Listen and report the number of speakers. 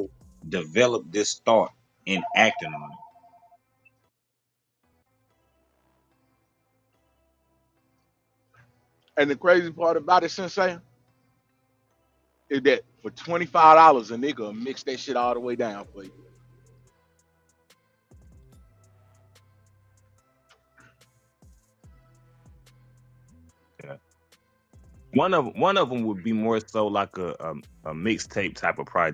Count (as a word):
three